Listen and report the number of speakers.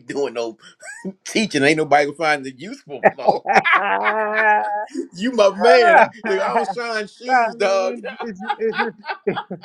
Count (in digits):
2